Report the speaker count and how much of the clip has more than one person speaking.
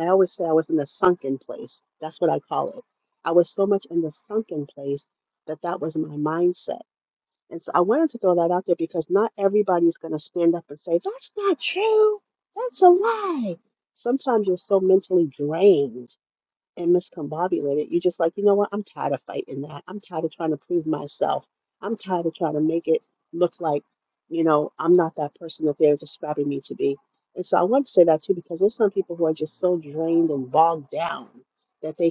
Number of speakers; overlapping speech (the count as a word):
one, no overlap